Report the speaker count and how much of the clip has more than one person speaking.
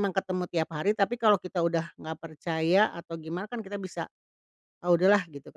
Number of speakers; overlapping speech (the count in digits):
1, no overlap